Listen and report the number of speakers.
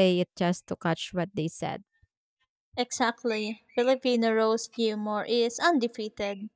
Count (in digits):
2